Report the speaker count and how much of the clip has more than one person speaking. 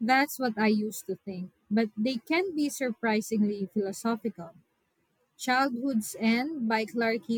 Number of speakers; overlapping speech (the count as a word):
one, no overlap